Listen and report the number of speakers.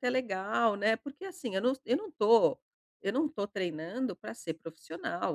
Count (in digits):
1